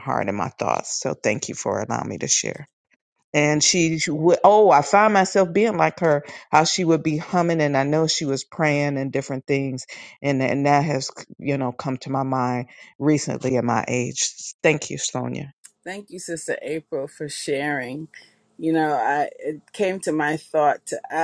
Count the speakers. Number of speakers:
2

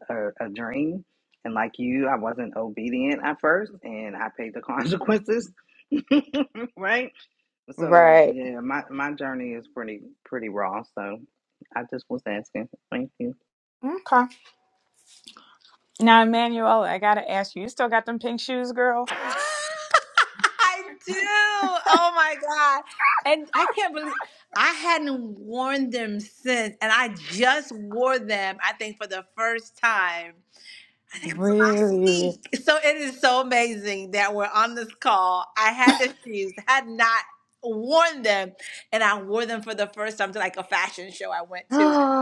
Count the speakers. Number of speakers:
3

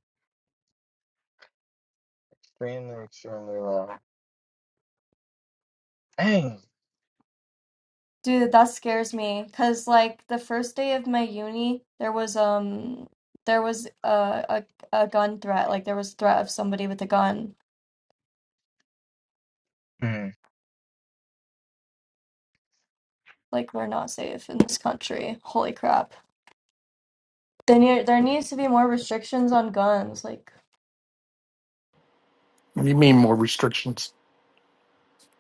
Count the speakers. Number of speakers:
3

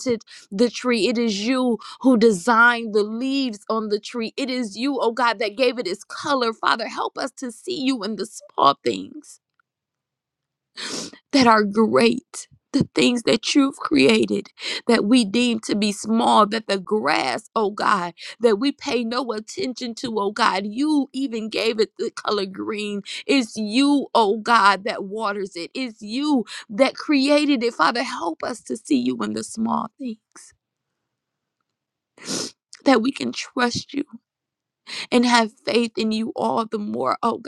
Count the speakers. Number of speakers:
1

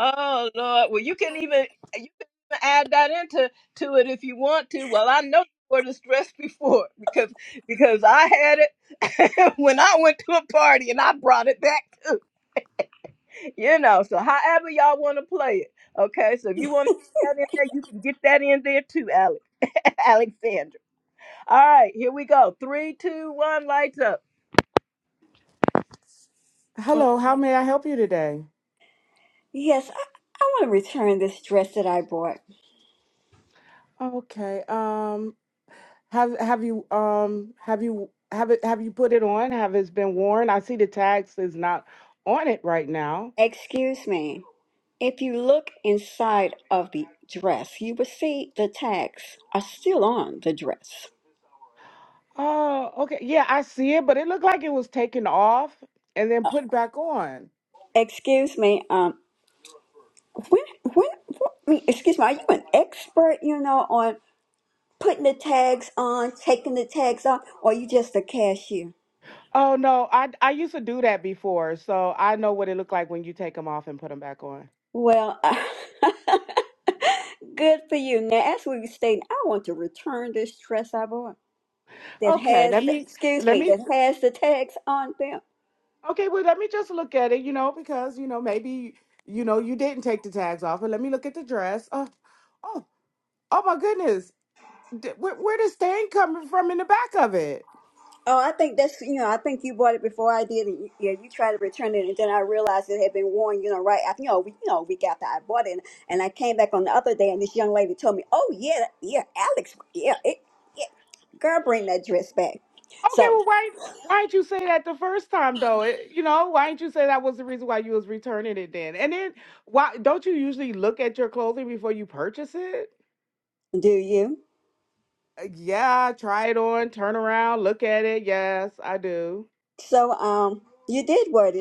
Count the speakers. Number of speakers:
3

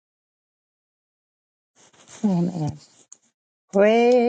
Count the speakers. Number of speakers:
1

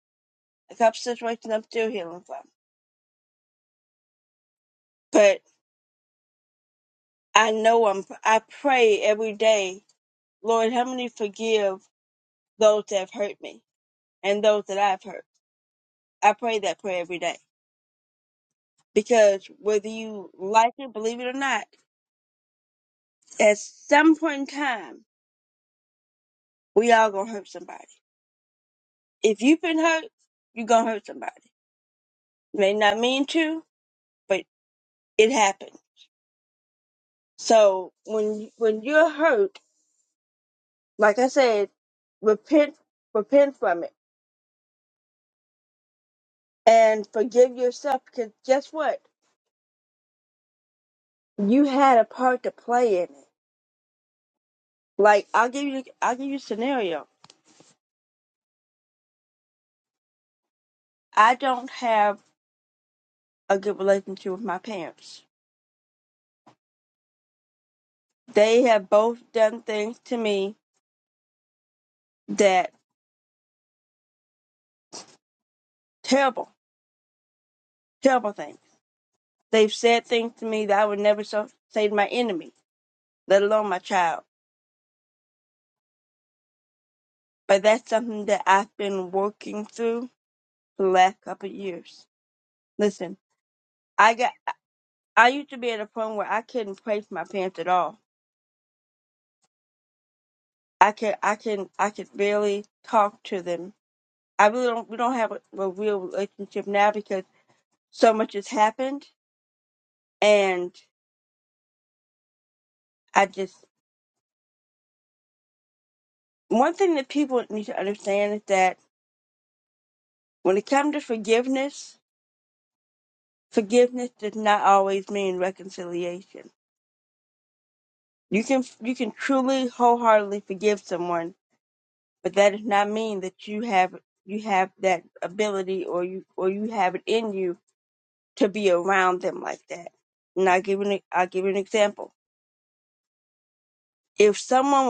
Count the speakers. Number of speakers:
1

